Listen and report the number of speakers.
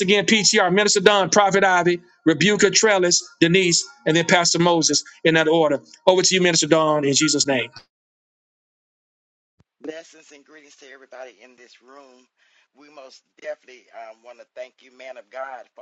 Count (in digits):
2